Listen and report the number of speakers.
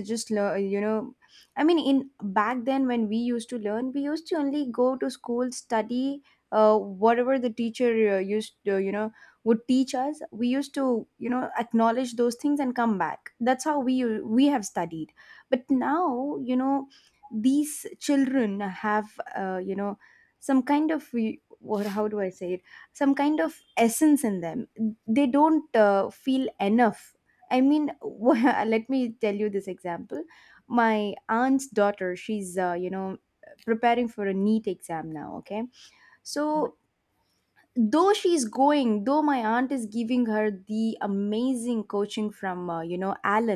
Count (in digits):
1